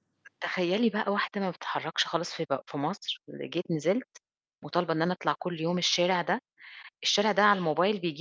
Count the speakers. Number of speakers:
1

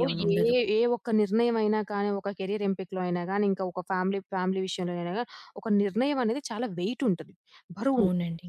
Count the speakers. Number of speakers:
2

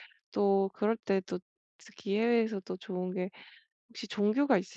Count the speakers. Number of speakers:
1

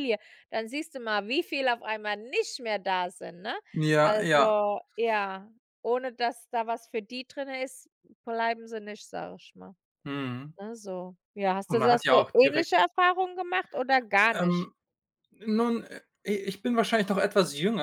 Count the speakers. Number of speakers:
2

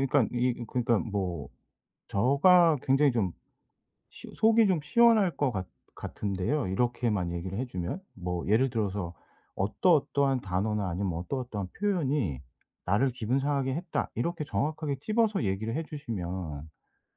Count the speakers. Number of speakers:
1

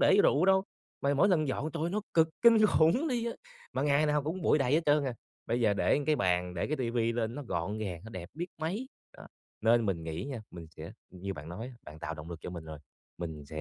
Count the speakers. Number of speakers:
1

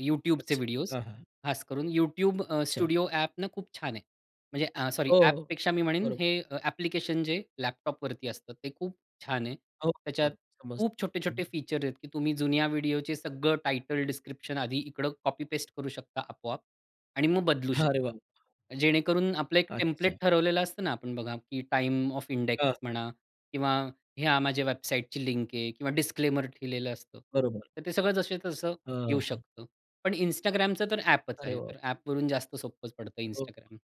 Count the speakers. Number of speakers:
2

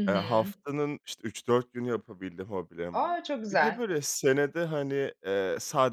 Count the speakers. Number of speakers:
2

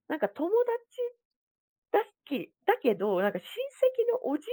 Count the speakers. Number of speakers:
1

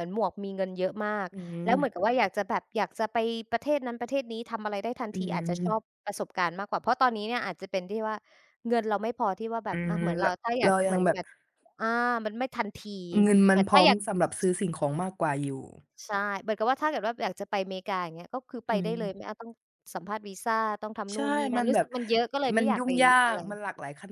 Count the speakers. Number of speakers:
2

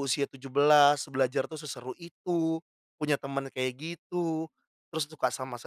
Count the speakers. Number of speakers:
1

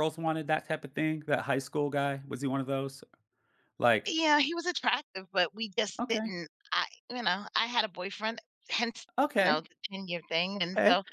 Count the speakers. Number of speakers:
2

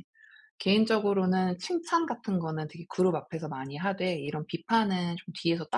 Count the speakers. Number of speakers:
1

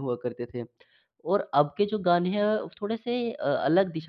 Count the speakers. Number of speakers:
1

